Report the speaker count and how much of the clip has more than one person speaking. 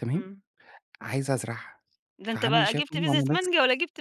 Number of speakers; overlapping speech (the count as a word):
two, about 32%